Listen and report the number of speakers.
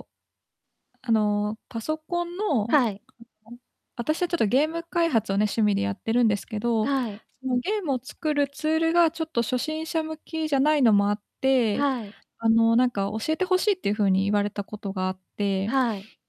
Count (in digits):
2